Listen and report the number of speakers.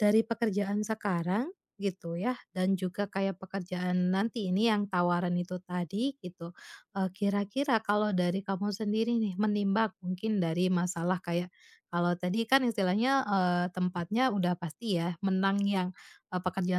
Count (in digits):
1